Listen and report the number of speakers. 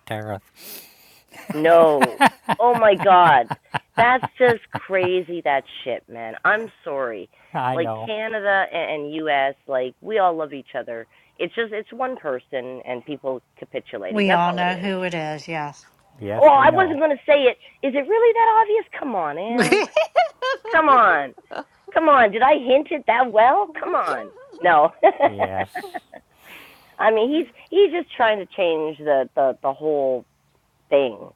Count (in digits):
3